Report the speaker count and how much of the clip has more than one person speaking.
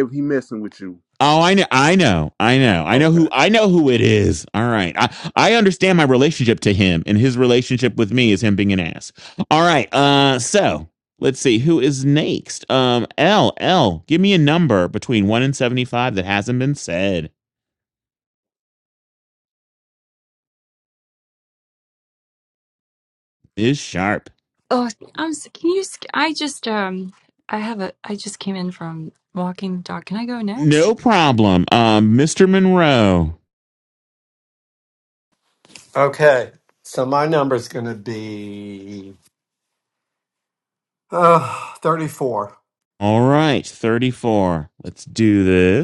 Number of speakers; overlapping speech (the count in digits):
4, about 2%